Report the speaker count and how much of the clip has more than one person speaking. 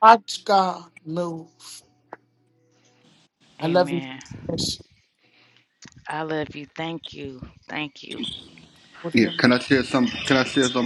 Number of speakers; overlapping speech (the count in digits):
3, about 7%